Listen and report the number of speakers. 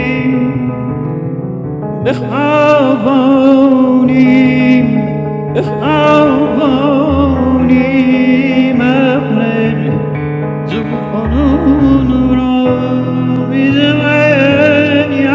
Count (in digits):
1